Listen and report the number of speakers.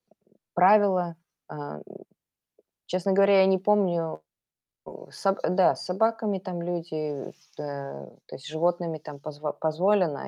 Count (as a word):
one